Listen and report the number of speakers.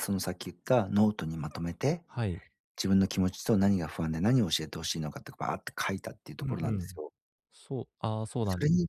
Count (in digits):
2